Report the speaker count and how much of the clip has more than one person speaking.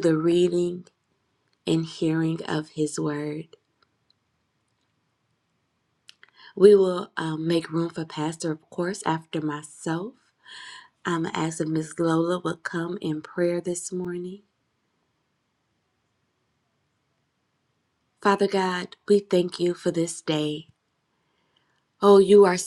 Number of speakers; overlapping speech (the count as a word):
one, no overlap